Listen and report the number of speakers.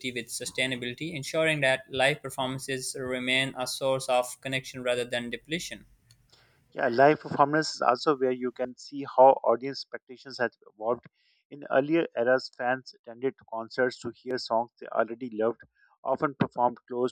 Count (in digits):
2